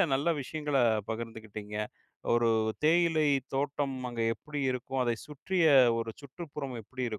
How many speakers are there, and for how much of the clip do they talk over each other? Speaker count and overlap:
1, no overlap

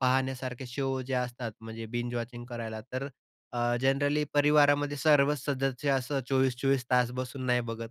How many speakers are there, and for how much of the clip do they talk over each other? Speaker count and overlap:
1, no overlap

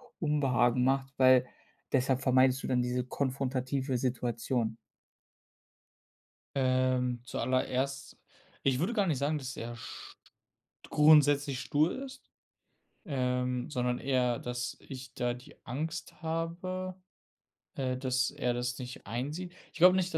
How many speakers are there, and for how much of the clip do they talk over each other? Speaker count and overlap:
2, no overlap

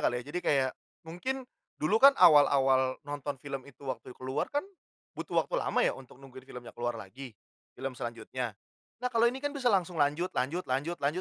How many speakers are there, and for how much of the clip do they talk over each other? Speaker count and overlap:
1, no overlap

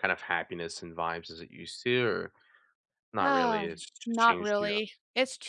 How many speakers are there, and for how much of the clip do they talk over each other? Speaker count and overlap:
2, about 22%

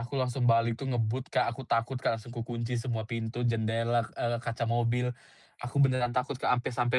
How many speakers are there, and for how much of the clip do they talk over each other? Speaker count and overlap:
1, no overlap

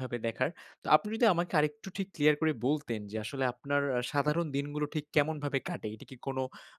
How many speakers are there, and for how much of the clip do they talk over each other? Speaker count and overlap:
1, no overlap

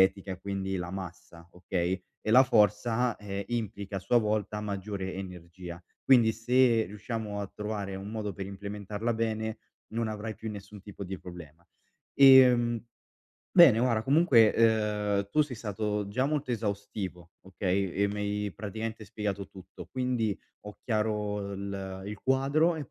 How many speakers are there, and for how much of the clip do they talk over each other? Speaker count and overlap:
1, no overlap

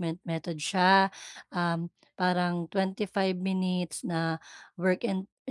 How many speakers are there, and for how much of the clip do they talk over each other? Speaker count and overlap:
1, no overlap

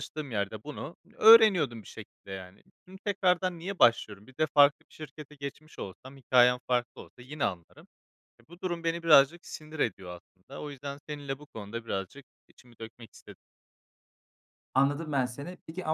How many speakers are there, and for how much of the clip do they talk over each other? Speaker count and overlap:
2, no overlap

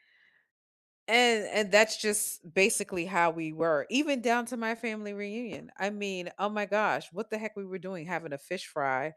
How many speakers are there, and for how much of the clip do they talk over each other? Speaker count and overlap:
1, no overlap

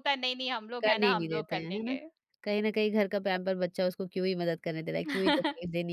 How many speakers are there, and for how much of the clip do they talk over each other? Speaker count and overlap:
2, about 20%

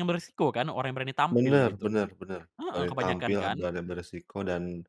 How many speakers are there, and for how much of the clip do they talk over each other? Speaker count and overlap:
2, about 33%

